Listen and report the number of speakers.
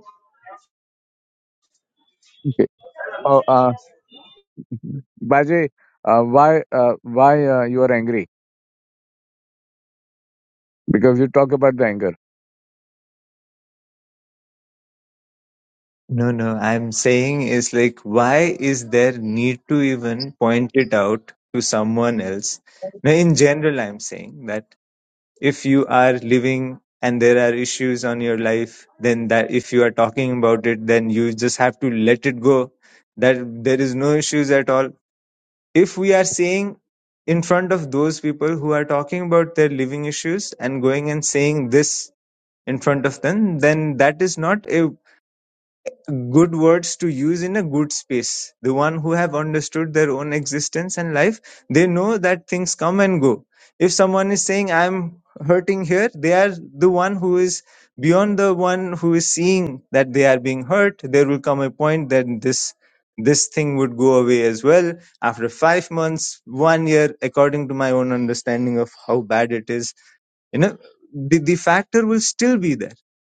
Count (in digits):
2